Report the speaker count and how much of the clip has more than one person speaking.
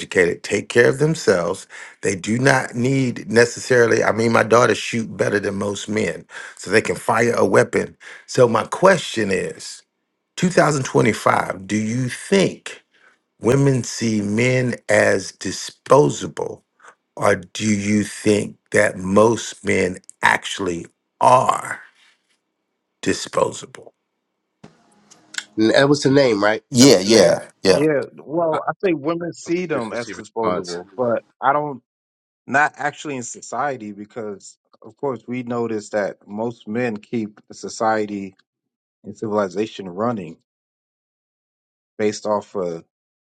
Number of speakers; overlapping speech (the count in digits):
3, about 4%